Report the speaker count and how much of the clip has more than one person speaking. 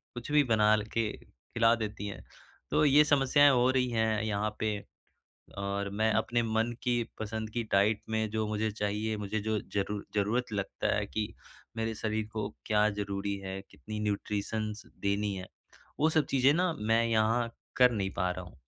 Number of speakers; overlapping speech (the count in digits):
1, no overlap